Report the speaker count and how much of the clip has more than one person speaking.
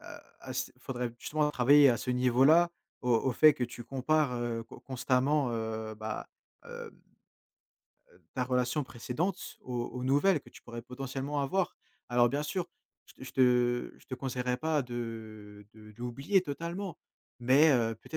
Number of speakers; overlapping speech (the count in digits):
1, no overlap